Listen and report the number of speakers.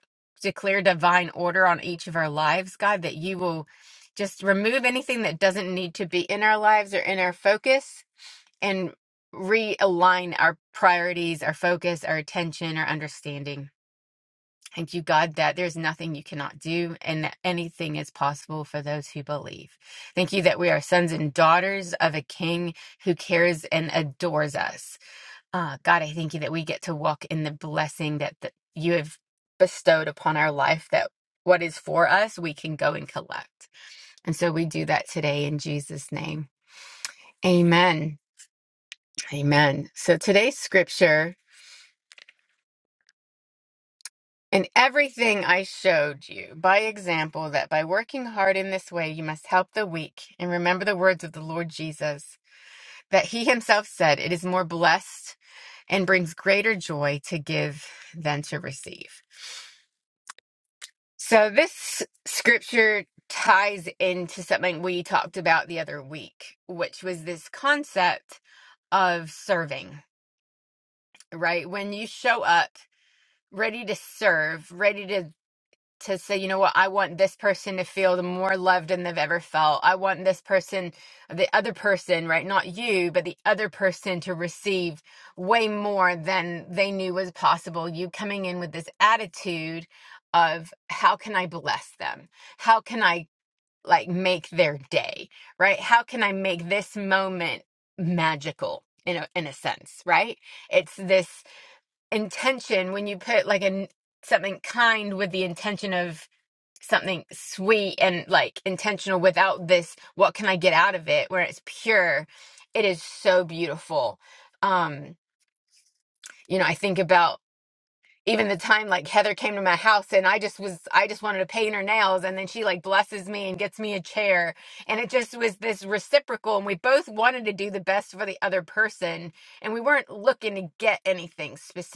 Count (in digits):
1